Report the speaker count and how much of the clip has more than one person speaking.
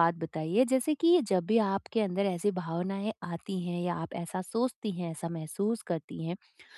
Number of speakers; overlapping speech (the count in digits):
1, no overlap